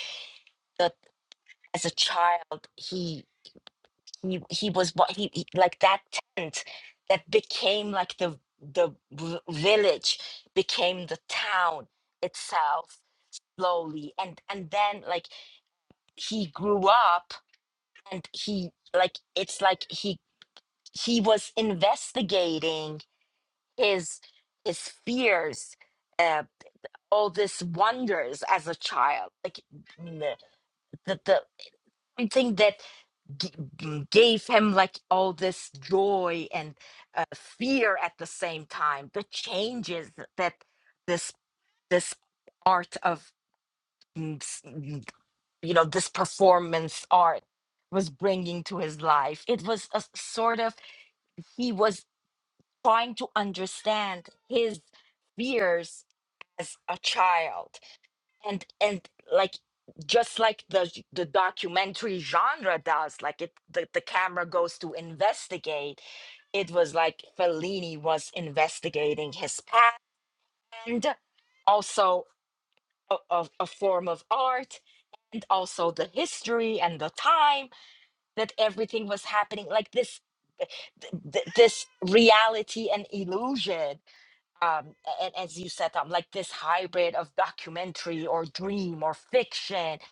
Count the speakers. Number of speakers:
one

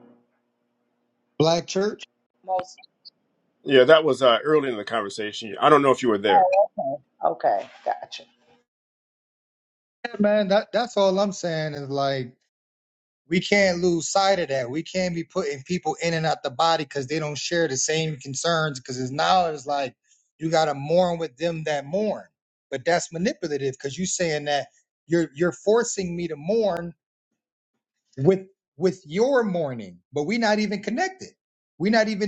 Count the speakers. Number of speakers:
three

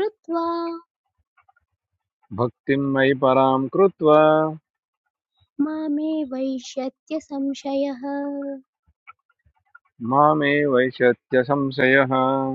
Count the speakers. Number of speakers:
two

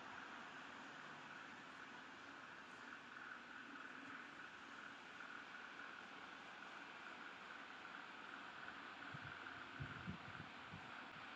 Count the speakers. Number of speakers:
zero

